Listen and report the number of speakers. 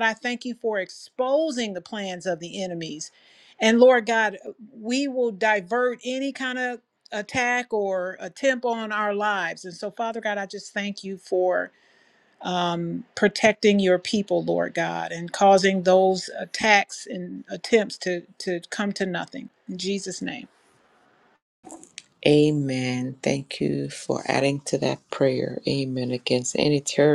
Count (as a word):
two